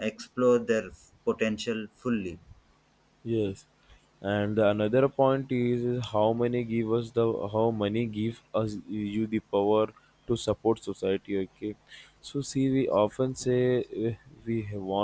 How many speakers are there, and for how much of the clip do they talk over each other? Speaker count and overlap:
2, no overlap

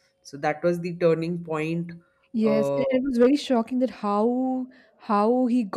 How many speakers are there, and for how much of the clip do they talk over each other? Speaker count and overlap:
2, about 8%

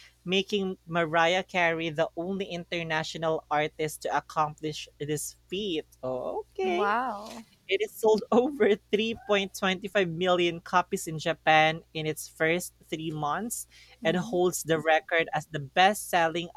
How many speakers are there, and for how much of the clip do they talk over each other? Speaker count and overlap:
2, about 4%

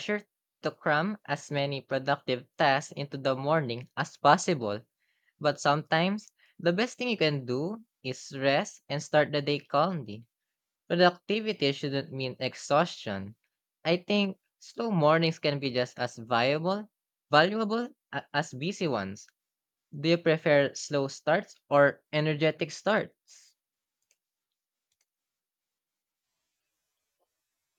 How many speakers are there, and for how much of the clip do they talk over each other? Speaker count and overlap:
1, no overlap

